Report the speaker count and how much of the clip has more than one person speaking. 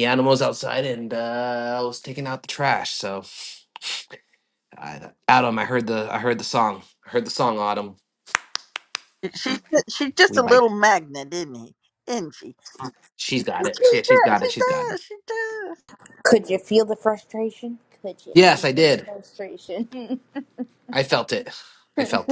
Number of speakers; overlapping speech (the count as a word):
three, about 9%